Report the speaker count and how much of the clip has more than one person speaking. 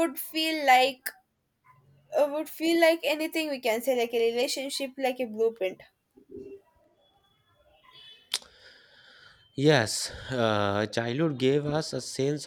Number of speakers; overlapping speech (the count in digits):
2, no overlap